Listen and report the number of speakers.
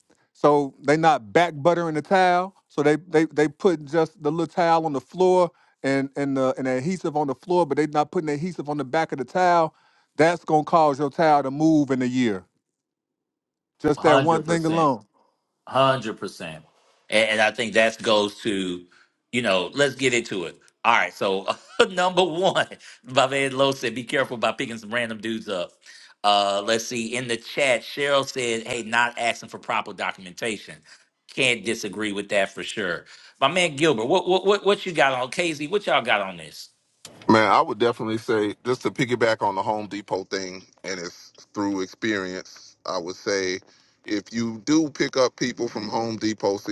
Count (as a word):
three